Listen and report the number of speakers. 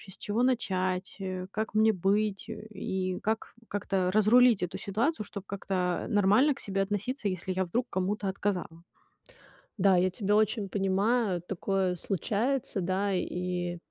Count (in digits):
2